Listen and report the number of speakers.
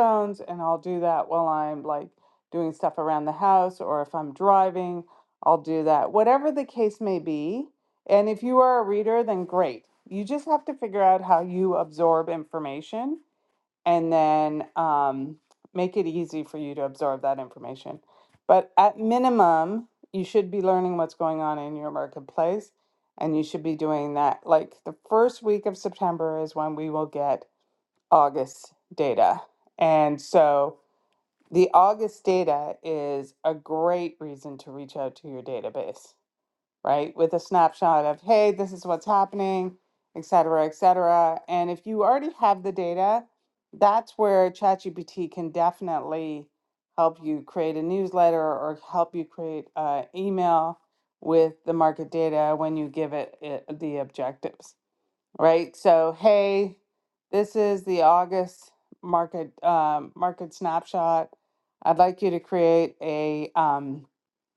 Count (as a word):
one